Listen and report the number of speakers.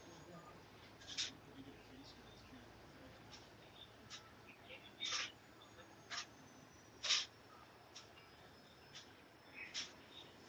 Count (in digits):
0